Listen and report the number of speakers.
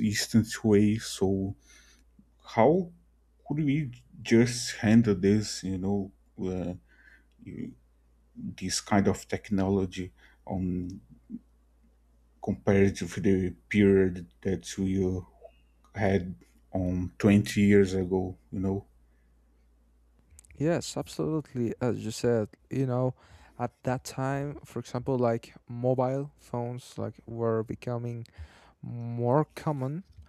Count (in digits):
2